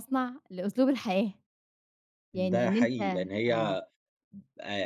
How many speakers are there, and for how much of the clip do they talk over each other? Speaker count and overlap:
2, about 20%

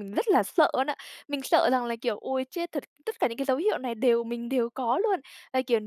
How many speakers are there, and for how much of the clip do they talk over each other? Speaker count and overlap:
1, no overlap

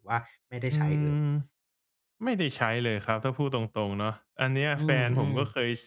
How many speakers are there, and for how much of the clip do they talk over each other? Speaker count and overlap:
2, about 12%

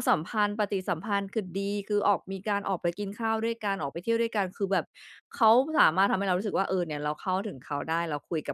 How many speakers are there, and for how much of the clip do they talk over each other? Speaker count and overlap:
1, no overlap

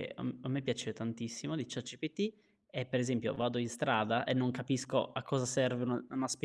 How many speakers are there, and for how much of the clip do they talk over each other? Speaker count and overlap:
1, no overlap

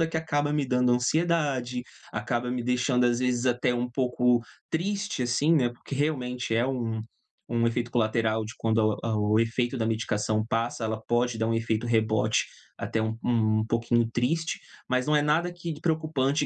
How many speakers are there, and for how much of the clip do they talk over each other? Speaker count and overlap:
1, no overlap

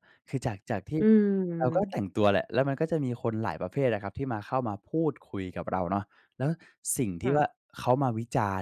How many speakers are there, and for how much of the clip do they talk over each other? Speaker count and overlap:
2, about 5%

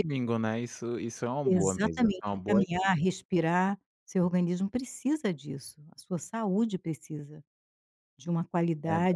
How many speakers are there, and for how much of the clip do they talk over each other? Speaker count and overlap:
2, about 21%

